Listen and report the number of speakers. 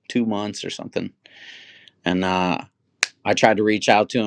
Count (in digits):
1